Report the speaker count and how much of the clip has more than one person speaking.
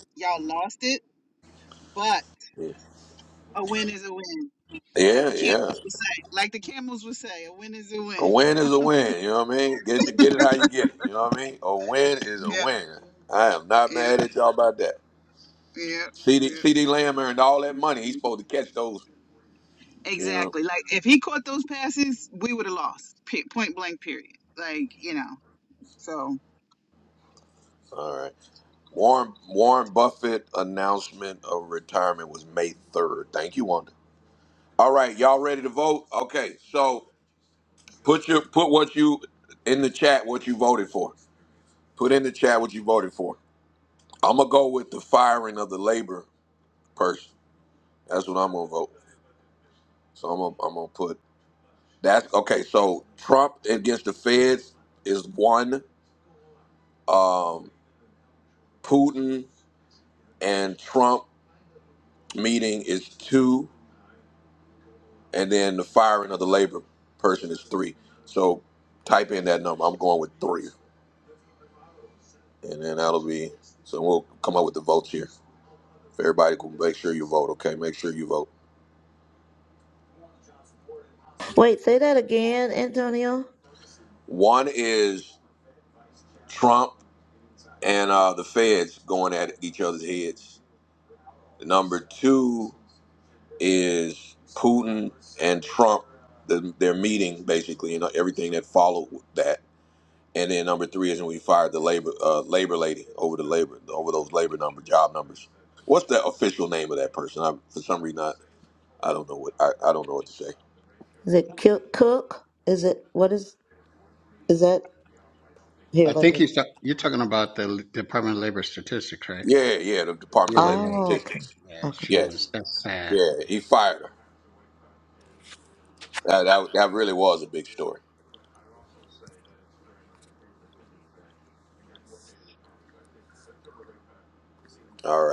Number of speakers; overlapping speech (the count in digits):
4, about 3%